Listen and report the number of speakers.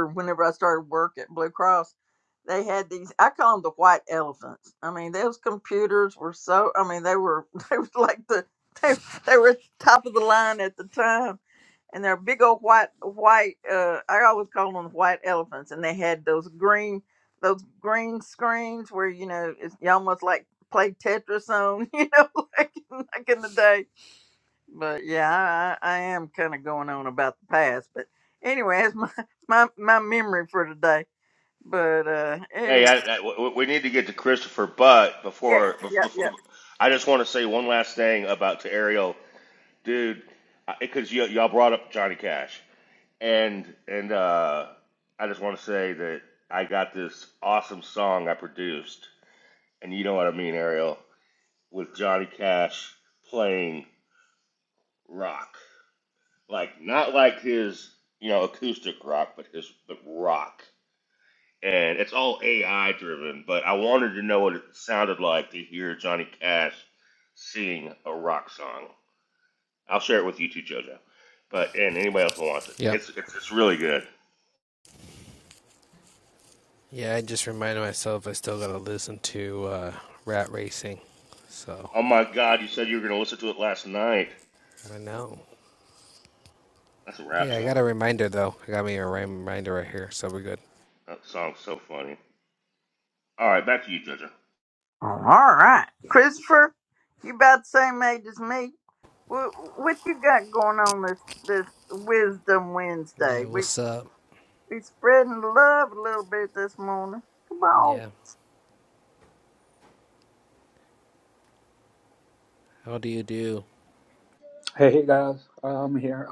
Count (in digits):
4